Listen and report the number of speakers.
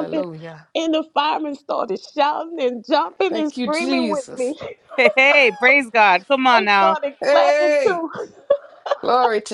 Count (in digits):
3